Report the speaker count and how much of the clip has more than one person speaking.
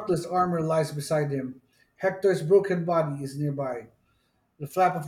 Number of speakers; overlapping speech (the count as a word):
one, no overlap